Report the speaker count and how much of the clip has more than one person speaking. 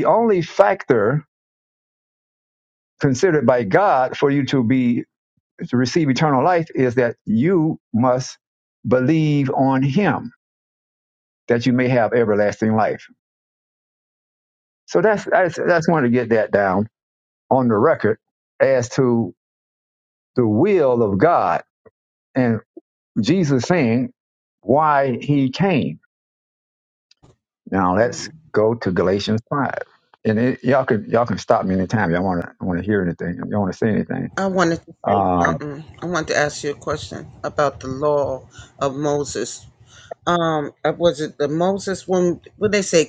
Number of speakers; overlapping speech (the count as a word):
two, about 1%